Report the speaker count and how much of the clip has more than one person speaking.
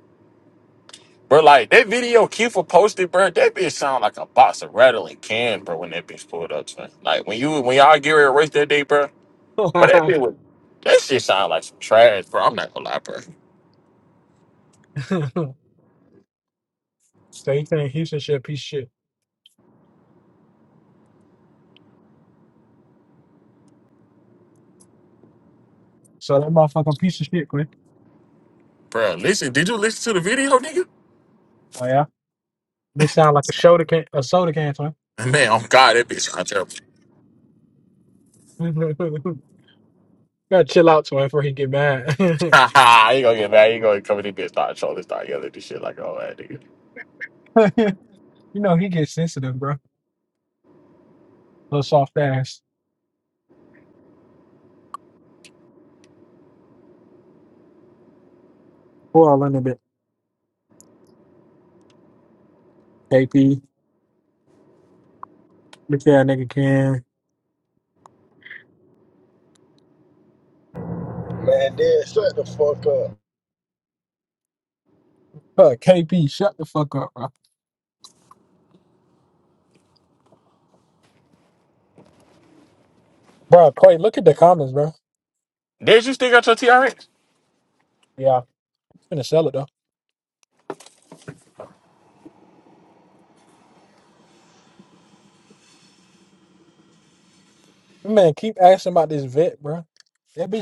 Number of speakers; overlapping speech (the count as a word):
three, no overlap